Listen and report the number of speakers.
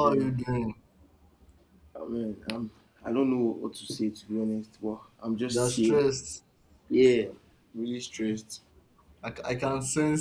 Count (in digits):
2